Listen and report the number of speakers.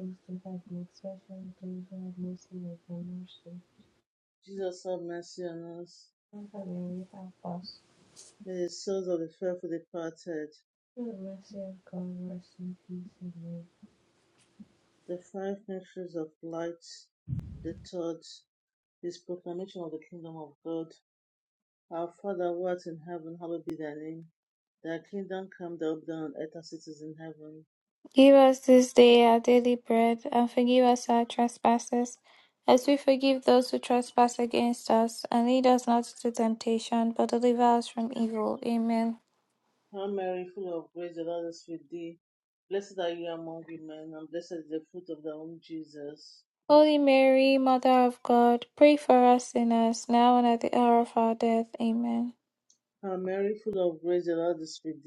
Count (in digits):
3